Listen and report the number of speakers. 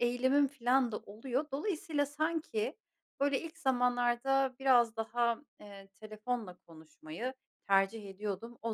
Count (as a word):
one